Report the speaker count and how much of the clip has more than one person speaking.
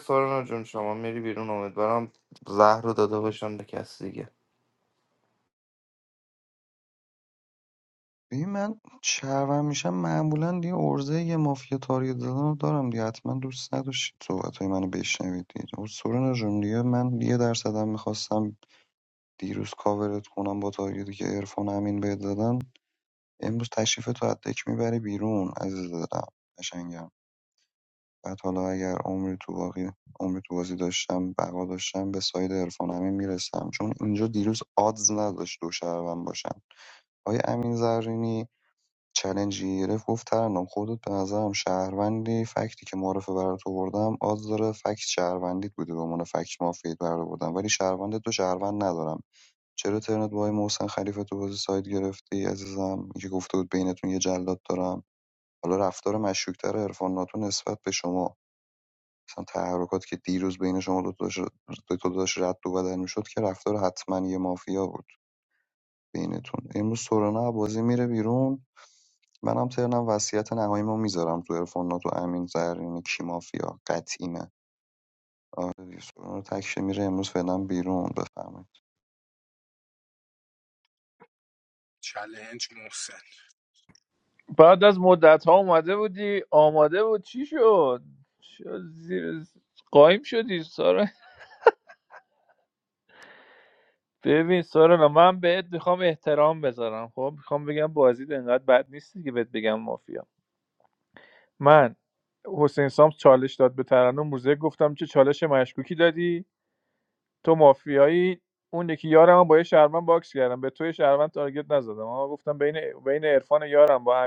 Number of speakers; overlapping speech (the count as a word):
four, no overlap